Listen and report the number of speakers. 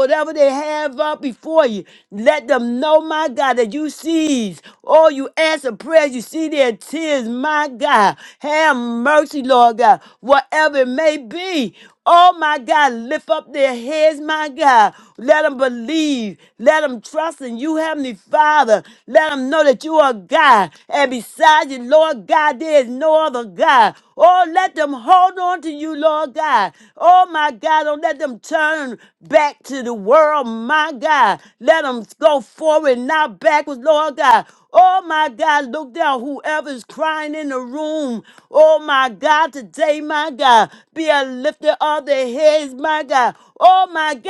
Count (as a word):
one